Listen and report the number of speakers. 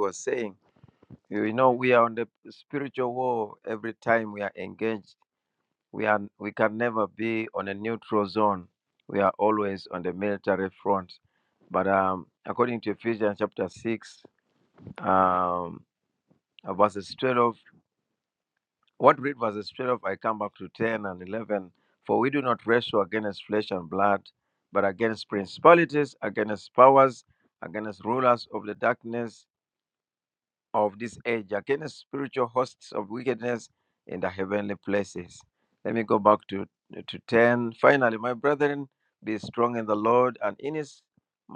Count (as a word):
one